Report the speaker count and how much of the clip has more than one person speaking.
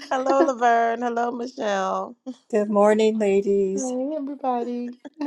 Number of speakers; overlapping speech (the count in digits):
3, about 2%